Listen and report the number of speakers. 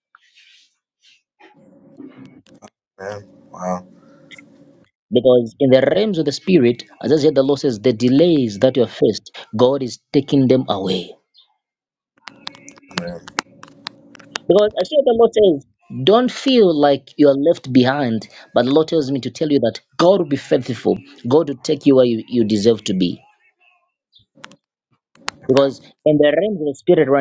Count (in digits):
2